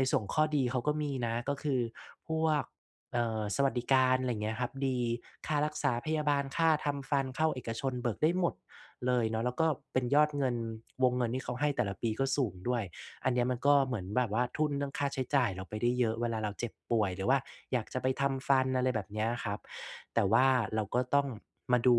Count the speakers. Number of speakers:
one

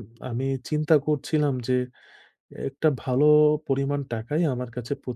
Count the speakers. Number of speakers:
one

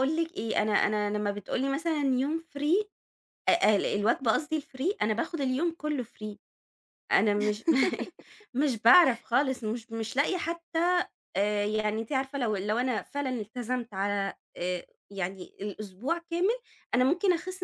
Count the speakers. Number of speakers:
one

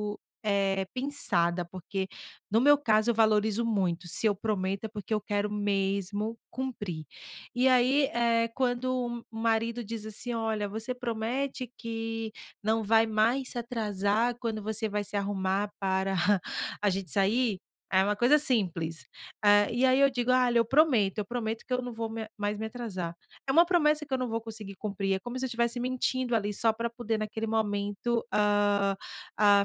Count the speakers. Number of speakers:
one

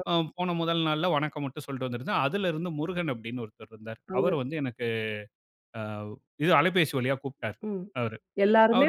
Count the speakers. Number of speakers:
two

